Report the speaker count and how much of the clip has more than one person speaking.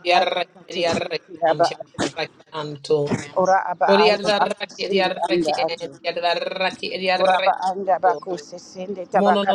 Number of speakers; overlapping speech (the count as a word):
two, about 32%